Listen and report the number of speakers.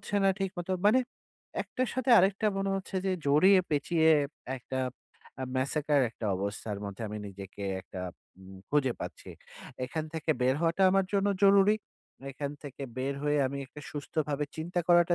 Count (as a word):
one